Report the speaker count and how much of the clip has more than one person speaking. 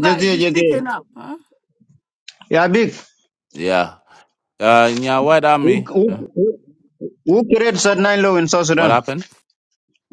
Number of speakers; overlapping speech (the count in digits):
3, about 16%